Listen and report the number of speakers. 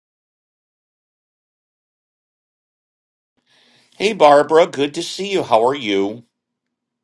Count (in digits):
1